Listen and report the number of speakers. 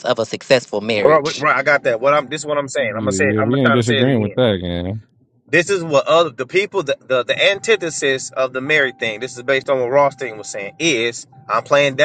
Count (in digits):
3